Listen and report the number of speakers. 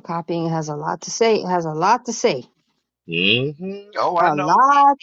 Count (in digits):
2